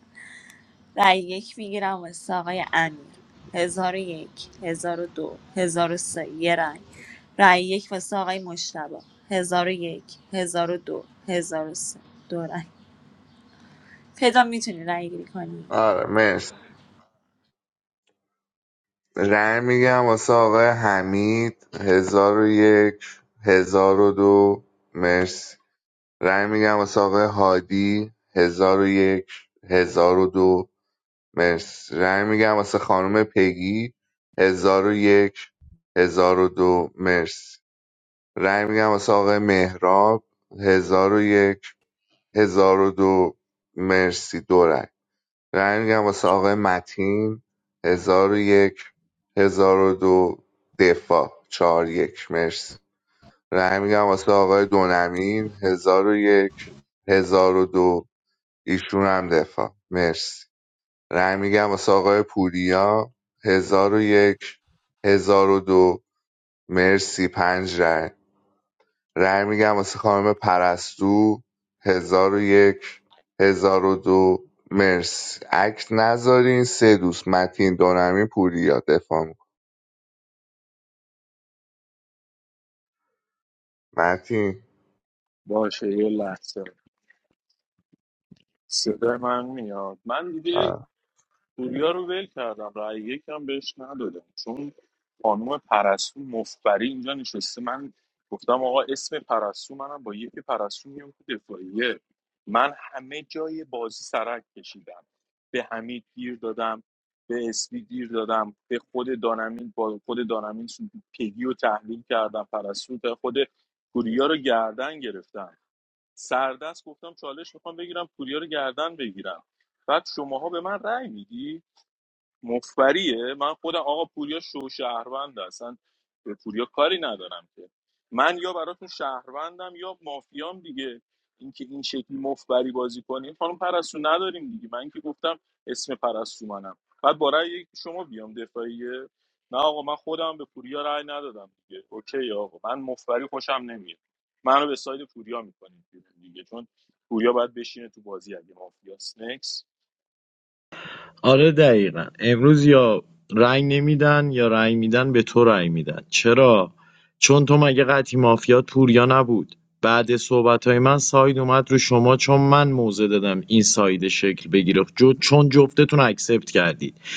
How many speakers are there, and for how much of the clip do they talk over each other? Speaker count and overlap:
four, under 1%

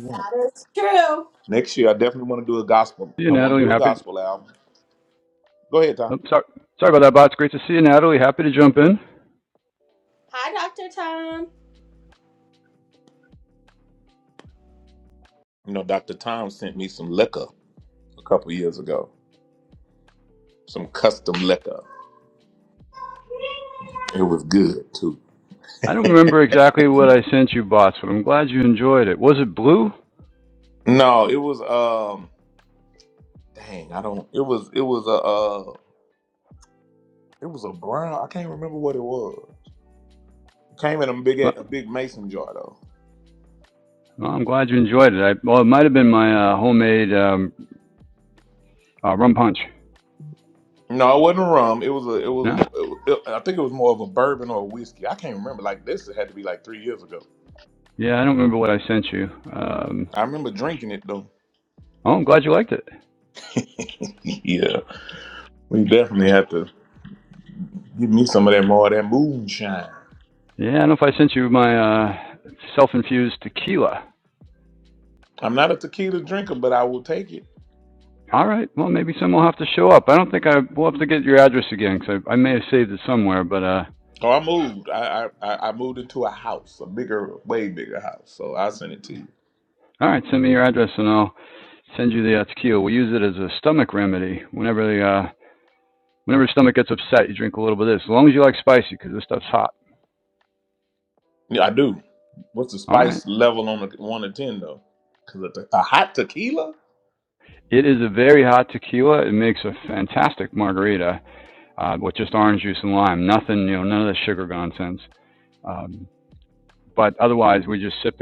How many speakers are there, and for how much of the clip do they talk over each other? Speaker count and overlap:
three, about 1%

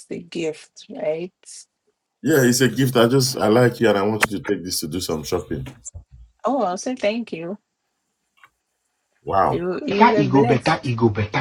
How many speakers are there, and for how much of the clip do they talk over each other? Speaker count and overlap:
two, about 1%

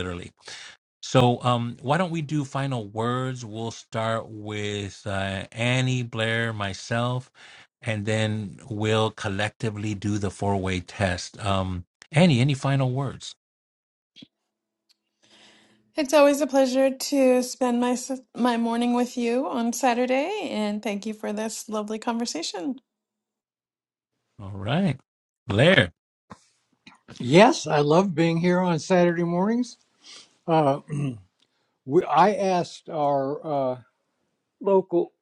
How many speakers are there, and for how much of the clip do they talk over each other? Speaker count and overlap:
three, no overlap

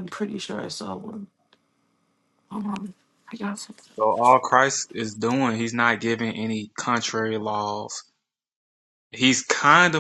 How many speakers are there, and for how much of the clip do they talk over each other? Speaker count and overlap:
two, no overlap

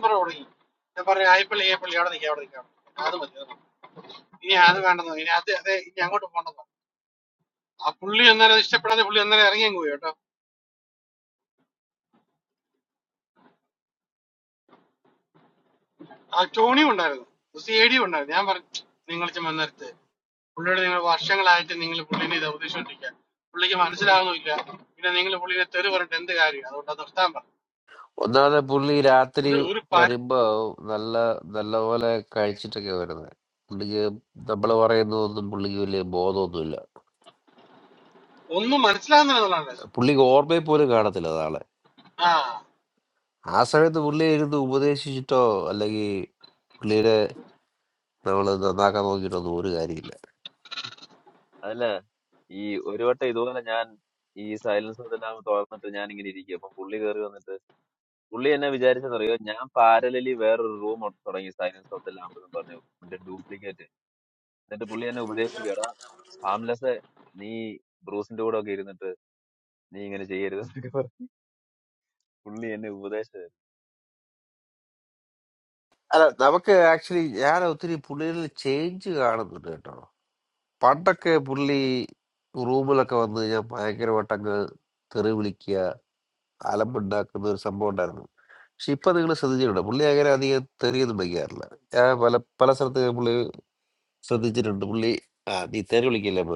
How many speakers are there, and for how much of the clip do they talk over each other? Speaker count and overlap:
three, under 1%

